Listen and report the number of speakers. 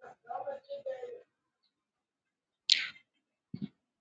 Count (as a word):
zero